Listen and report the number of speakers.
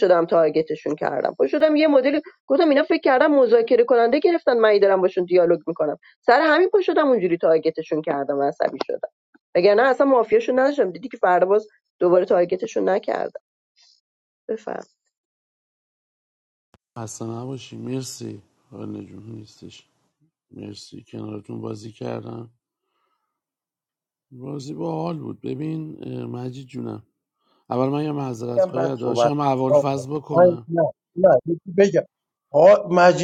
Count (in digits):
3